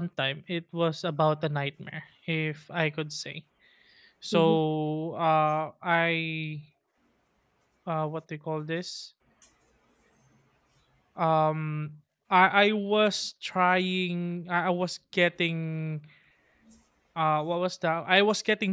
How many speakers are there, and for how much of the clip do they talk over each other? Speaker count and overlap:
one, no overlap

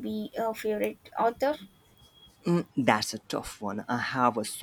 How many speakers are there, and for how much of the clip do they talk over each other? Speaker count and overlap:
two, no overlap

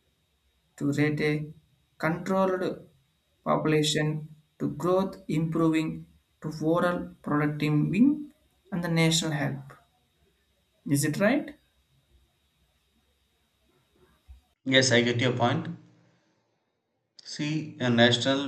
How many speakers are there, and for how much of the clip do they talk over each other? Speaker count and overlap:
two, no overlap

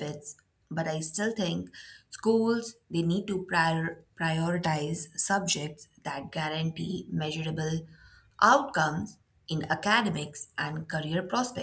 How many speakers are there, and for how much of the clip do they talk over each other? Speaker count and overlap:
one, no overlap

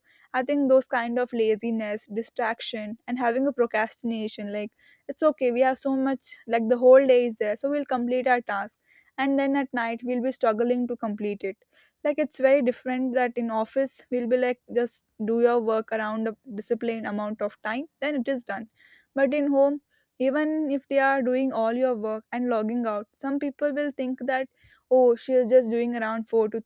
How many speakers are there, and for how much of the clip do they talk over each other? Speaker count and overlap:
one, no overlap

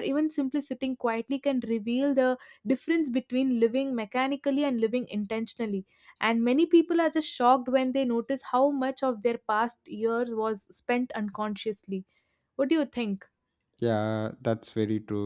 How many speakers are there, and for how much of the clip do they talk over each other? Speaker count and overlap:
two, no overlap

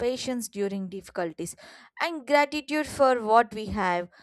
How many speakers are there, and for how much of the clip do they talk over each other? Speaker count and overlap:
one, no overlap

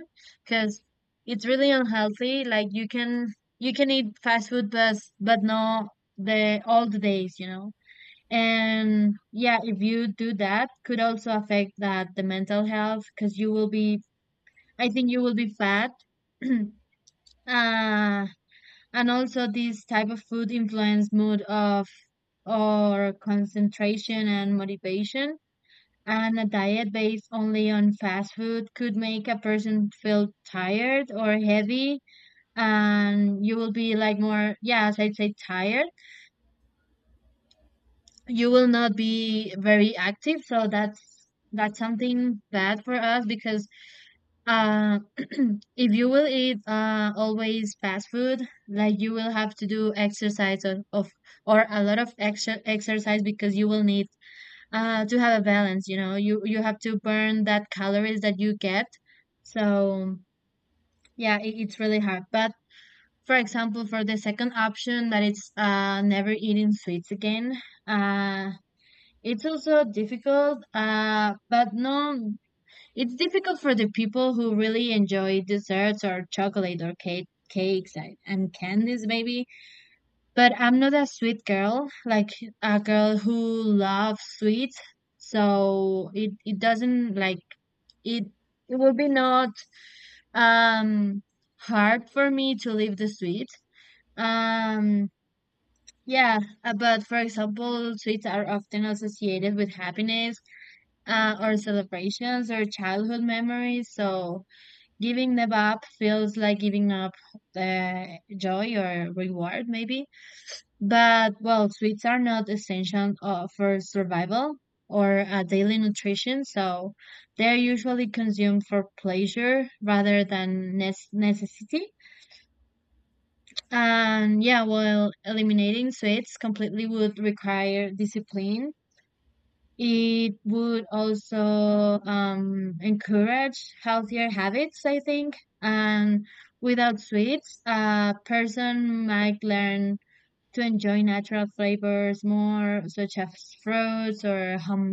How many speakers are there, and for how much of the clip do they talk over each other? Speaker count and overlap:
one, no overlap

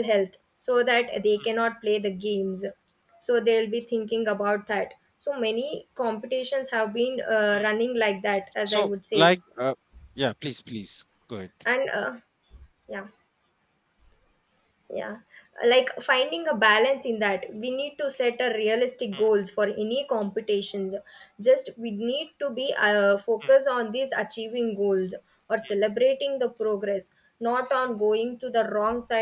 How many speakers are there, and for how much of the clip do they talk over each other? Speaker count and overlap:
two, about 5%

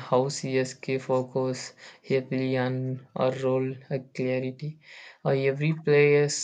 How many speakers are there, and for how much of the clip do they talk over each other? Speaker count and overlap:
one, no overlap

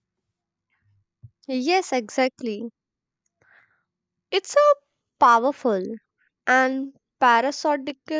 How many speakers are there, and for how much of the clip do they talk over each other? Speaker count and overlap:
one, no overlap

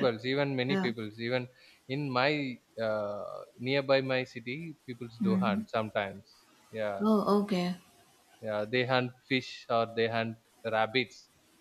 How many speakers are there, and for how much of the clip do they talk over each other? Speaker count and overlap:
two, about 7%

